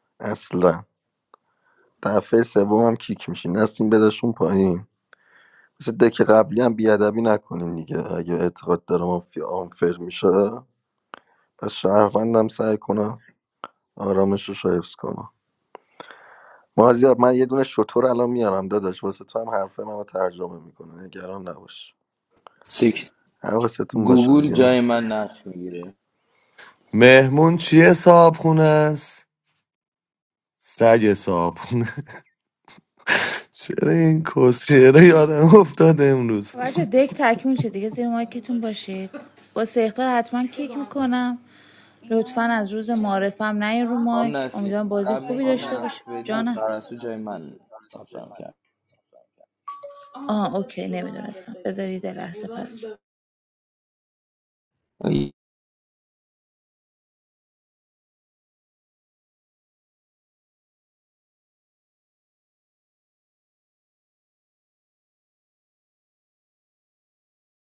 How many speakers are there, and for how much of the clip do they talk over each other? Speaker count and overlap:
4, about 5%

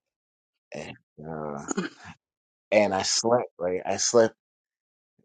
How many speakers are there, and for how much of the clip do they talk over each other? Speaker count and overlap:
1, no overlap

